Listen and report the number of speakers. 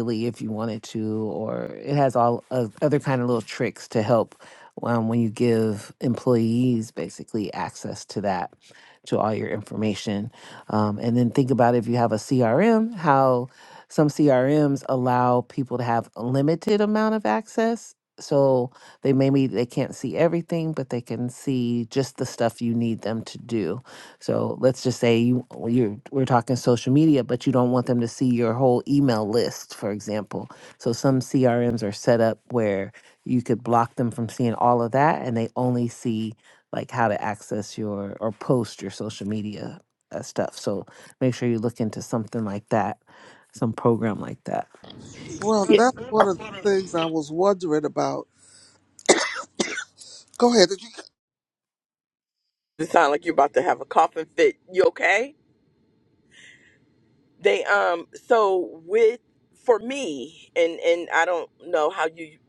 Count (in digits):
3